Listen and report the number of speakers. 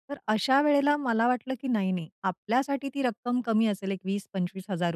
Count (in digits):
1